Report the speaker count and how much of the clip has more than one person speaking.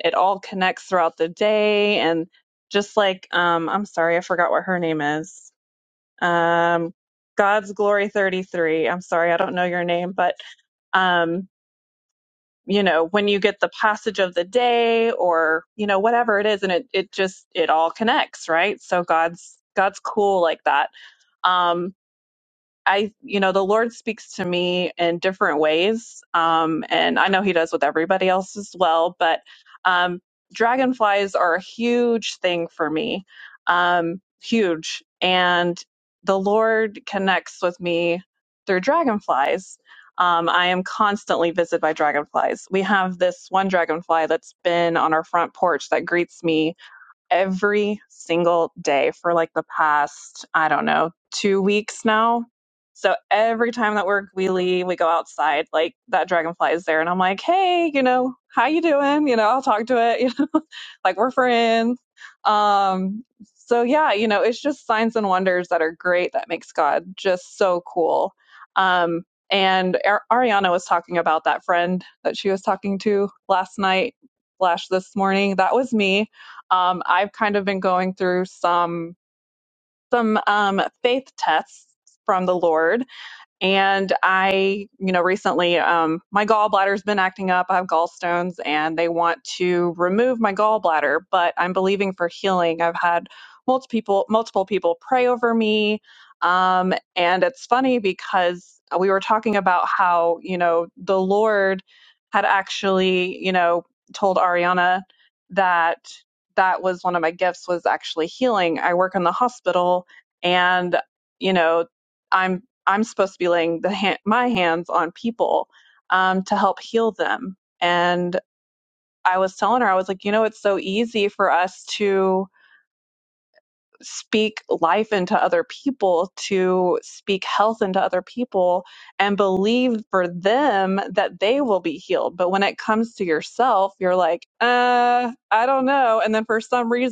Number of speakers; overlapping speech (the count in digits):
1, no overlap